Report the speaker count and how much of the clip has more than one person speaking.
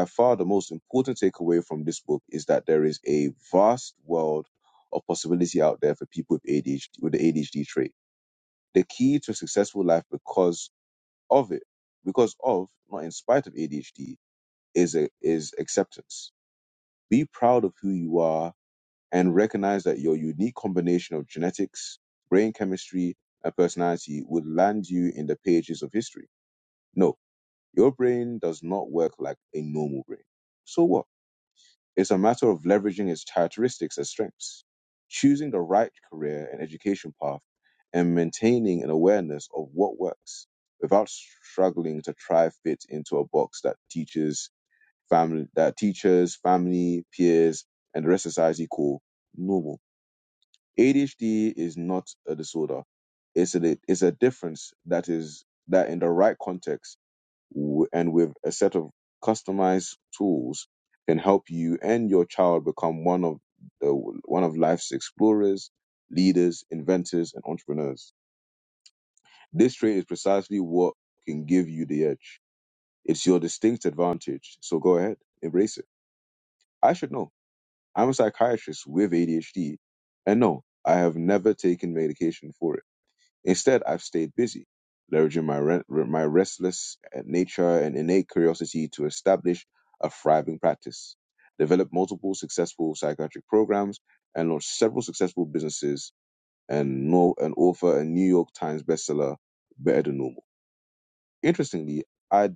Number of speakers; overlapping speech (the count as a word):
one, no overlap